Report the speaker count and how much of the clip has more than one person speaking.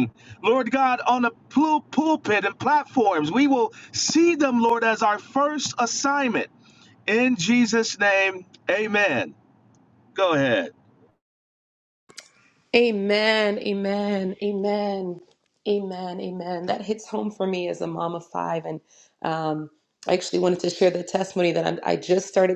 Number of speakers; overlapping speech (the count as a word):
two, no overlap